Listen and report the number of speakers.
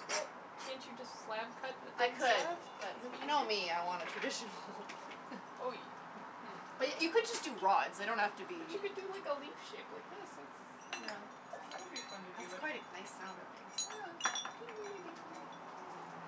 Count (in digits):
2